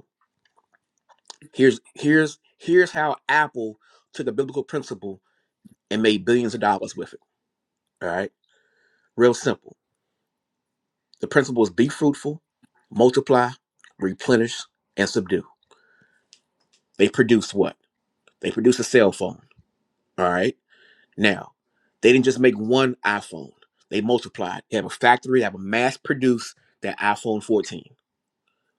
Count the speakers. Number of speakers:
one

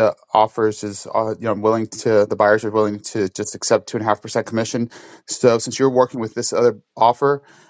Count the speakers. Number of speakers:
one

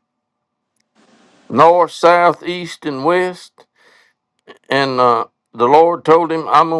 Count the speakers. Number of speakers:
one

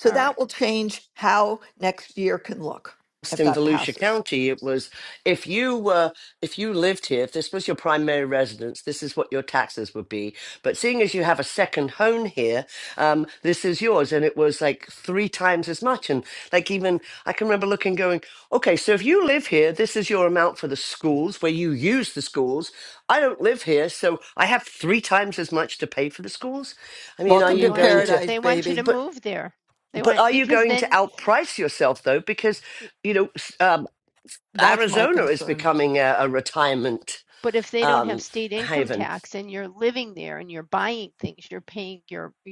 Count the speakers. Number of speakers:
three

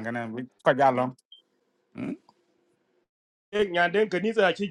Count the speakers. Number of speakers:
two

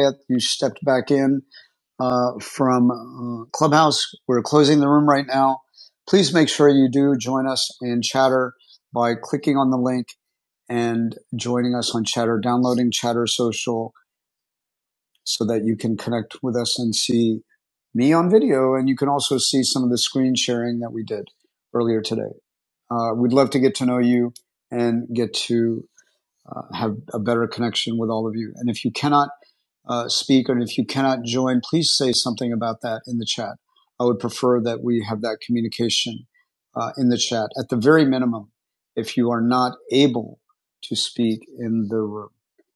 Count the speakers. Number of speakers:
one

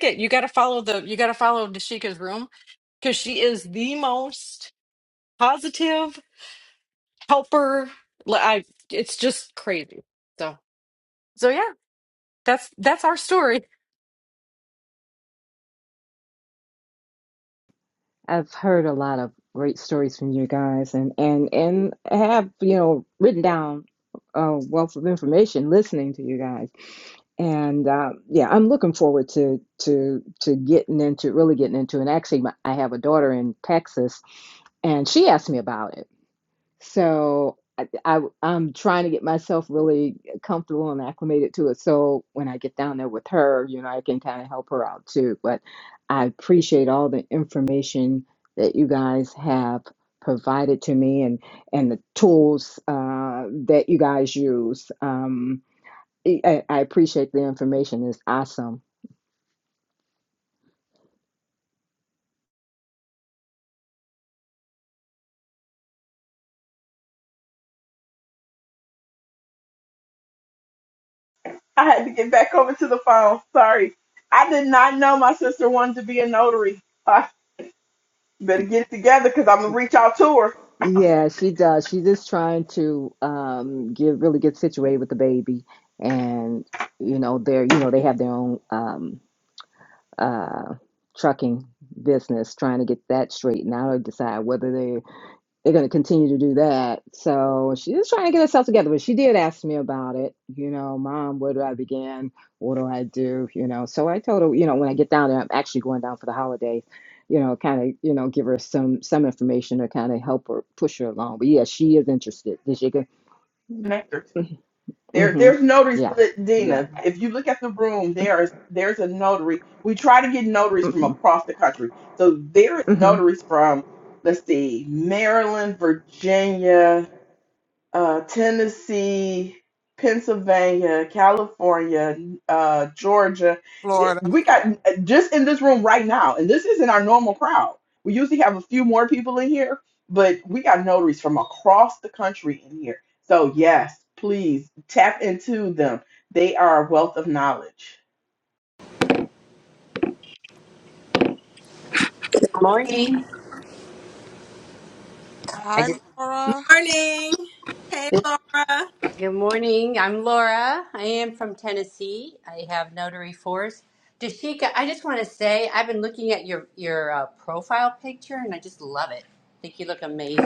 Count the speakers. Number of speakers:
six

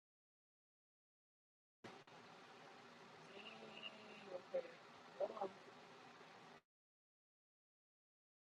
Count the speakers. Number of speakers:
zero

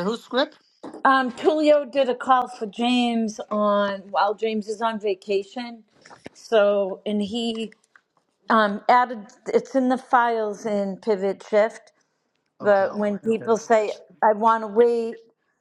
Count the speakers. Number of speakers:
two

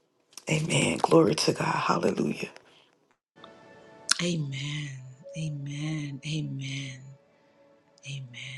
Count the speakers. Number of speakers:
two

